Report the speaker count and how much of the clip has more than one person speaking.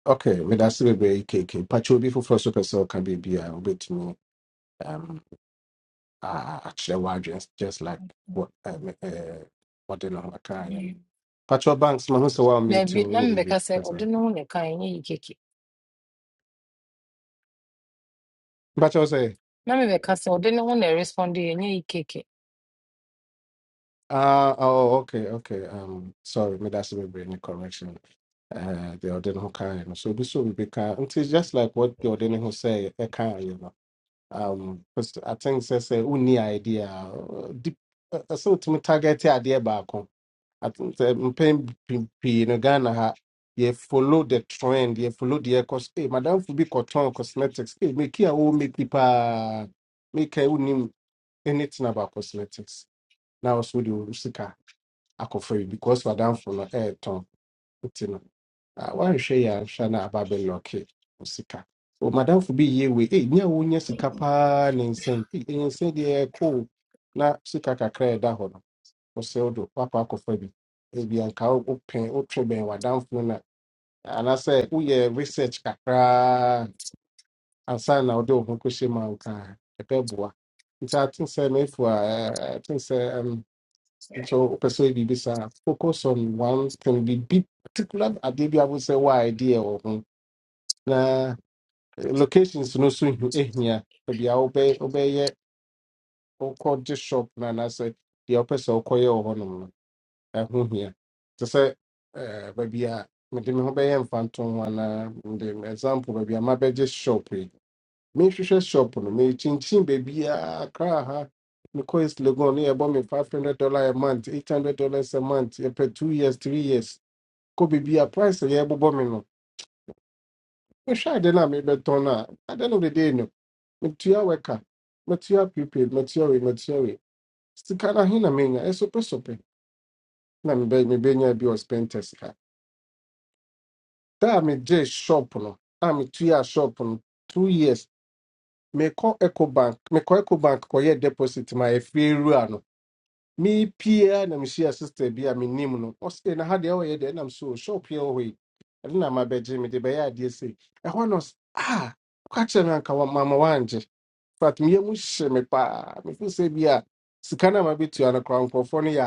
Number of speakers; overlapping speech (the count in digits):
2, about 1%